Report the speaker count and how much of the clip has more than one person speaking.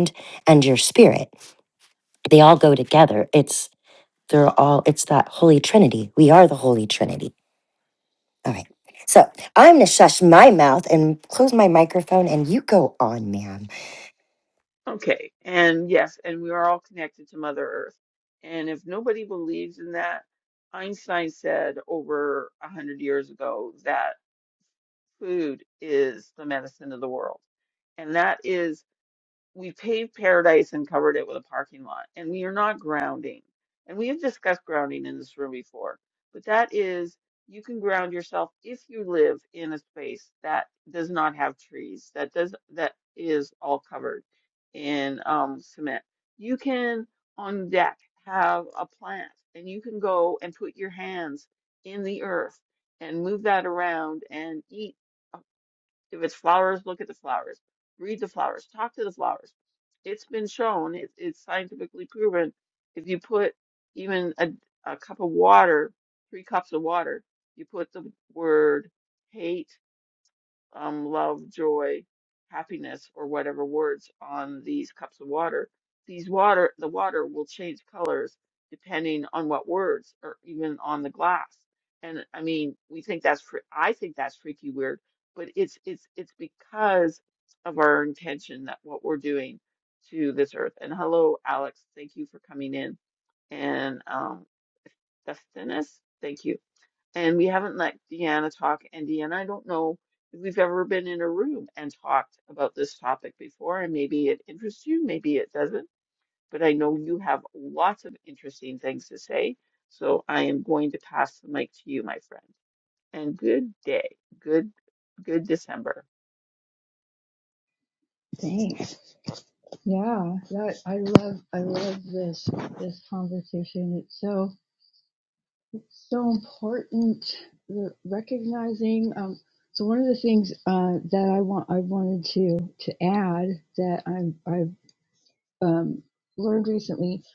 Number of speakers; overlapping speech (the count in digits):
3, no overlap